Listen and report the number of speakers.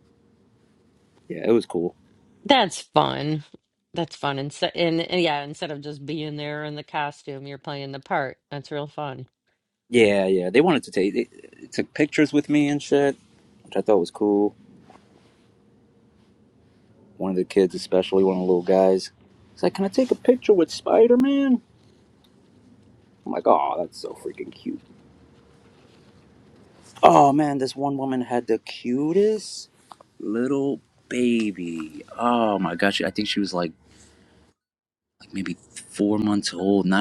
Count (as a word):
two